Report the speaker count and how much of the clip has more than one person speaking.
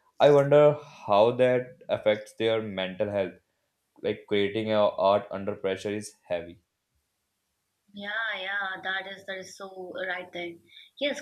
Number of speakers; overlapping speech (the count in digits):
2, no overlap